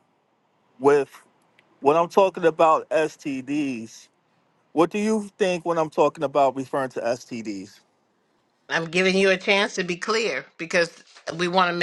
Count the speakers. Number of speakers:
two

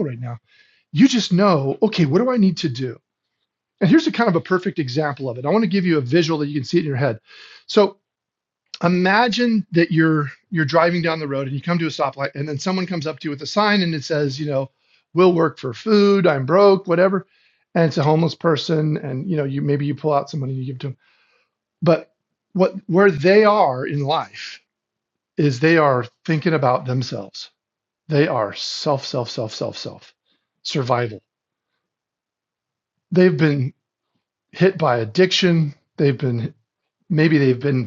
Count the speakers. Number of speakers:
one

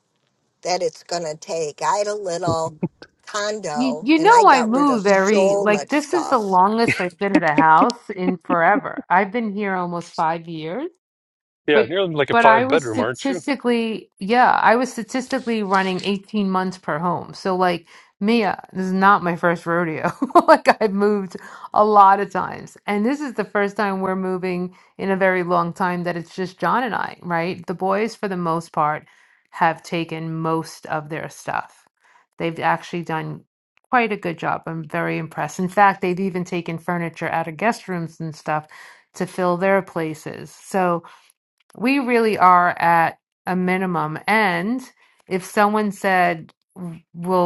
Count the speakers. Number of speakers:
three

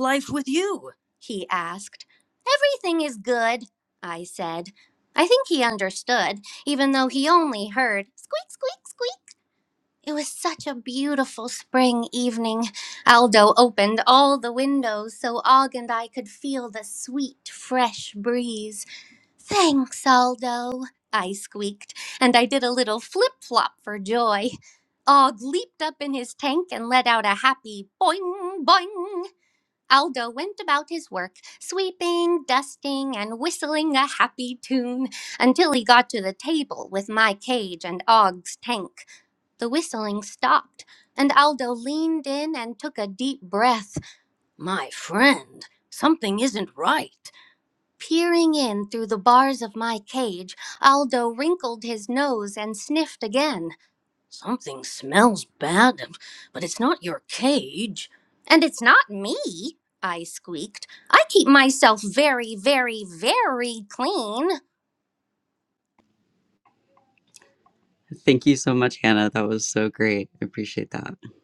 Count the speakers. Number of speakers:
two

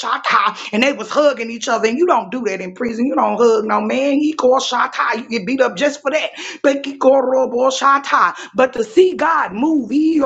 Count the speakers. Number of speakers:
one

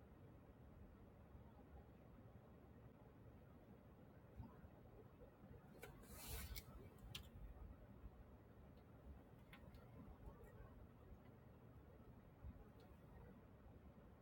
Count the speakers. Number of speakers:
zero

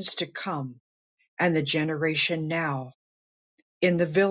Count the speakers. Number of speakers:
one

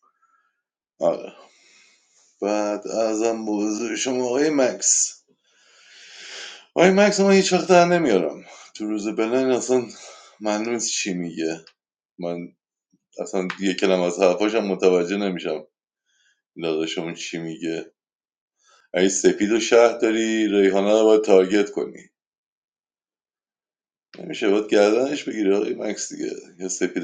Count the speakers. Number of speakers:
one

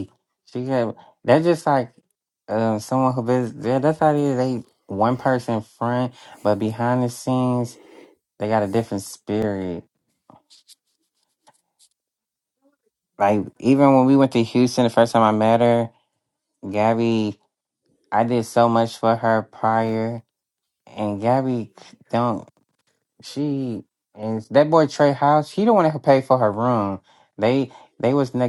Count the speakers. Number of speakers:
one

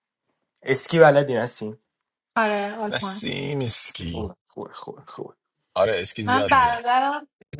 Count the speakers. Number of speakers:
three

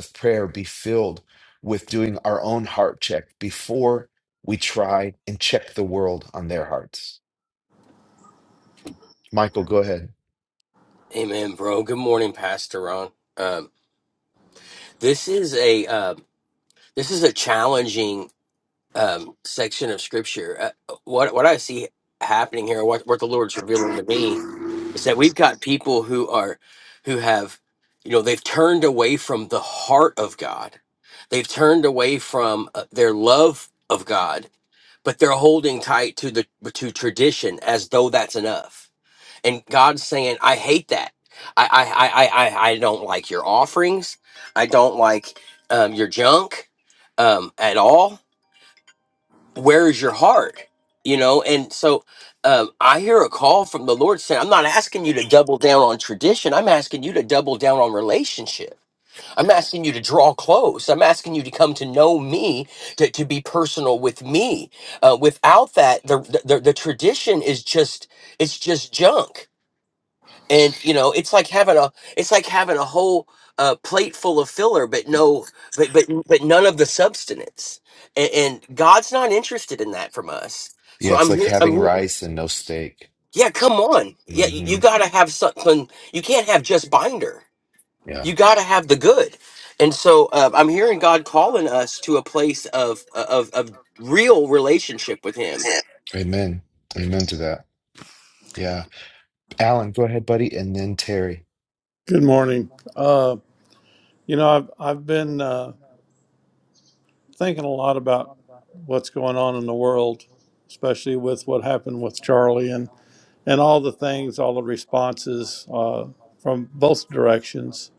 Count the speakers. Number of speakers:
three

